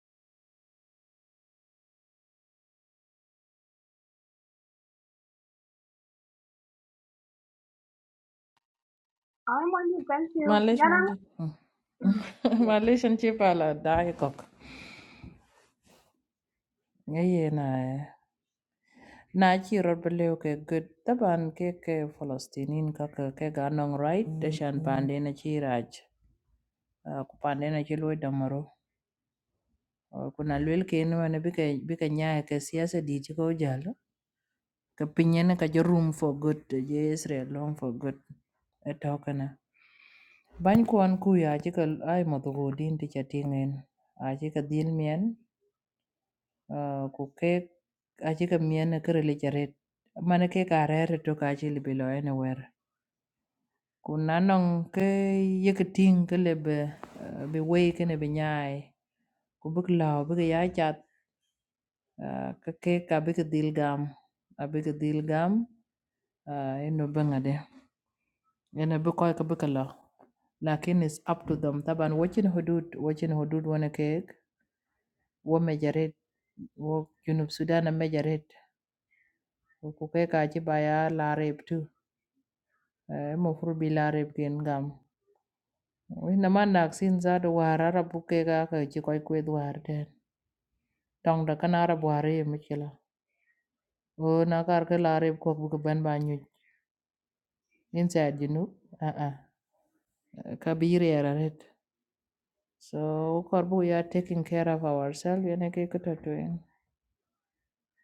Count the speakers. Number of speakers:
2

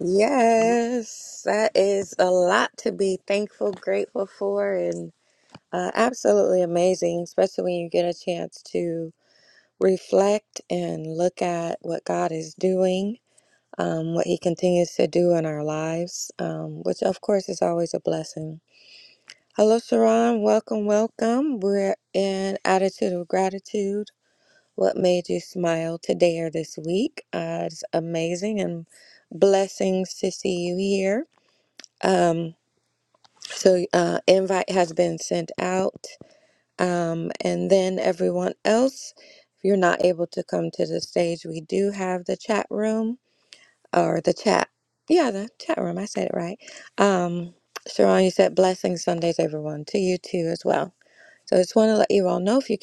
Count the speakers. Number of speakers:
1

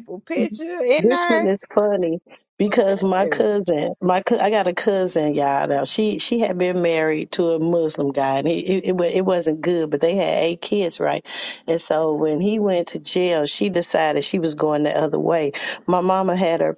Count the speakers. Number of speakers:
2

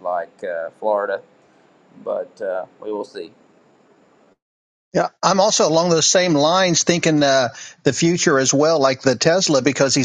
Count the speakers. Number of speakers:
2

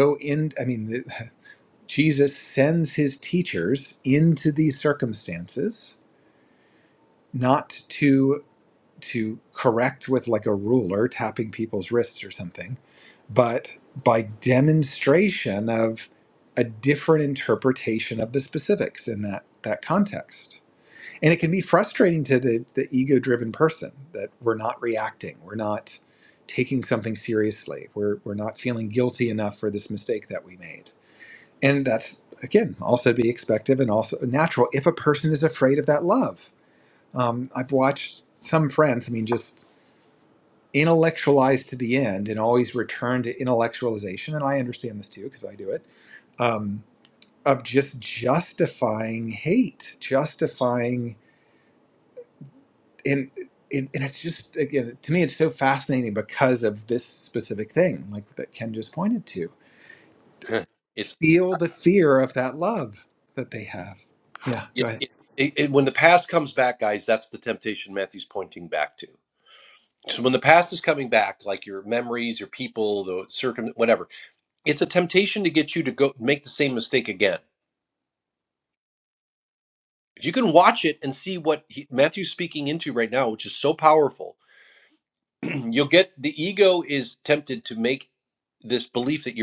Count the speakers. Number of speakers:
2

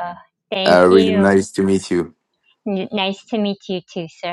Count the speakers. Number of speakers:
2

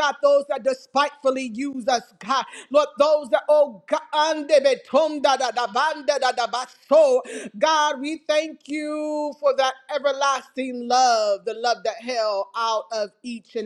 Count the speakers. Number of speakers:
1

